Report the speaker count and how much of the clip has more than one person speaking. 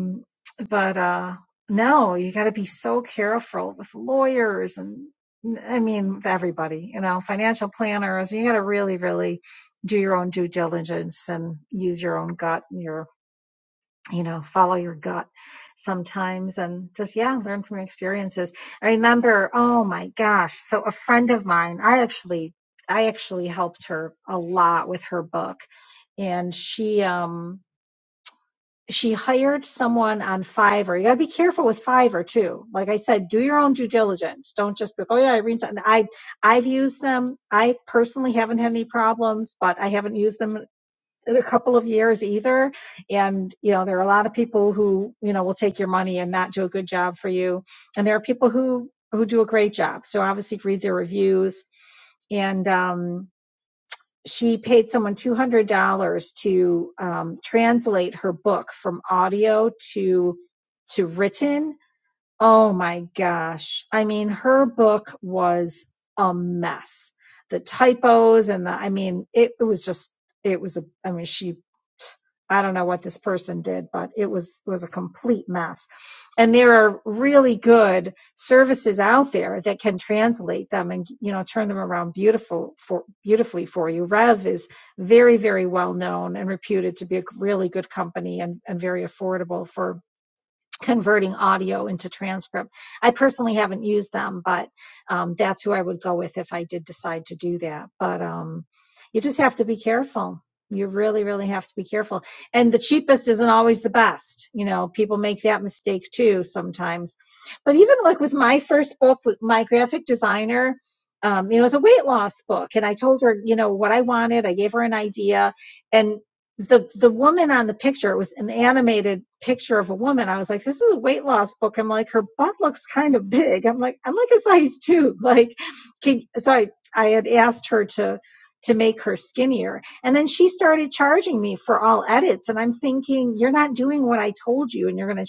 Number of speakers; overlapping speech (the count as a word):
one, no overlap